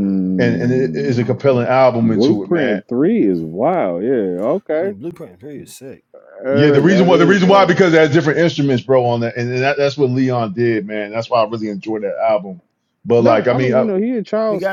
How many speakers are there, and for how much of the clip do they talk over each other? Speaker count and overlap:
three, about 26%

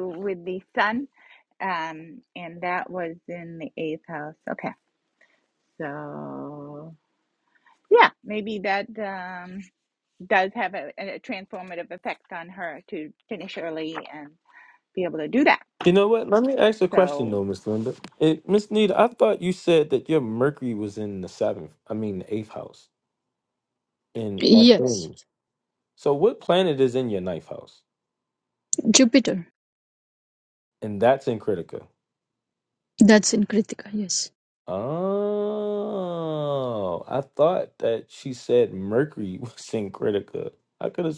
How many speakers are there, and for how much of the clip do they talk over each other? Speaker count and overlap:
three, about 2%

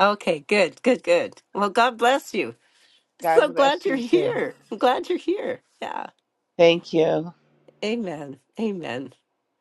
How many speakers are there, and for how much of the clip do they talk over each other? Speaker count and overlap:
two, about 10%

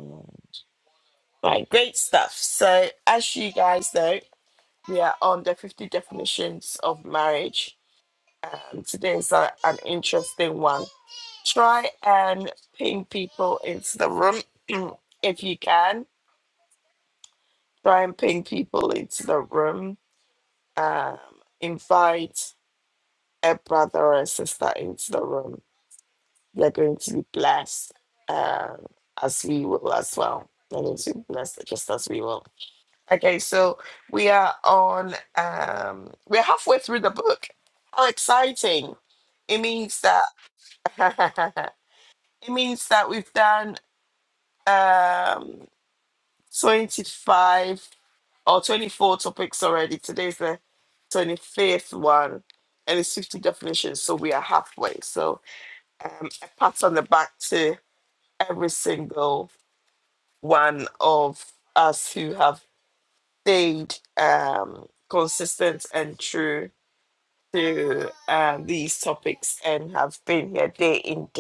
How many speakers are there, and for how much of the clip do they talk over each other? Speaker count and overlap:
one, no overlap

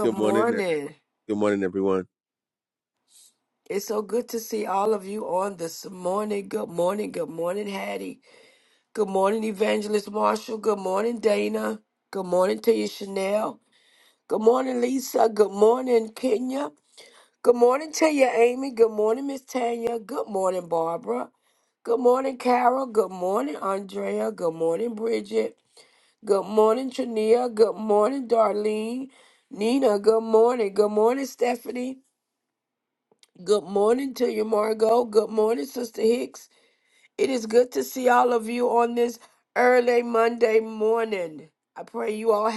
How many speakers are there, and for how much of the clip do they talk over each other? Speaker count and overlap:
two, about 1%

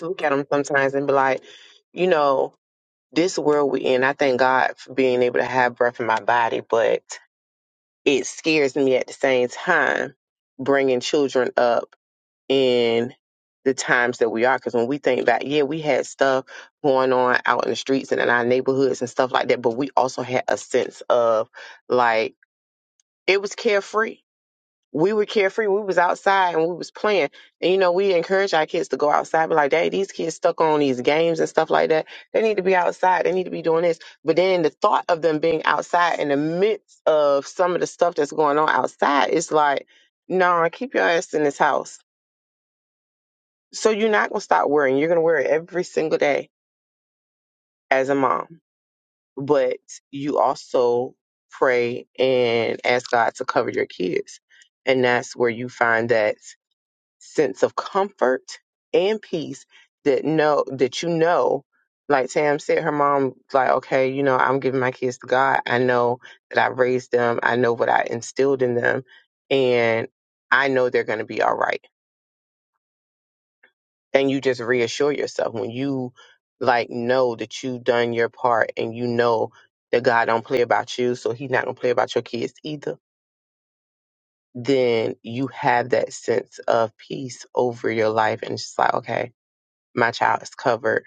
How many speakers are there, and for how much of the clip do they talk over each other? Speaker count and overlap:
one, no overlap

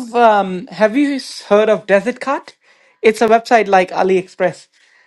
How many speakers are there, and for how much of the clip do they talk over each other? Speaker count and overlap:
one, no overlap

